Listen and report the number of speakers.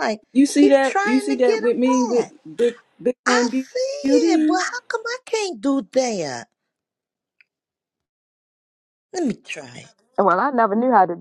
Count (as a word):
three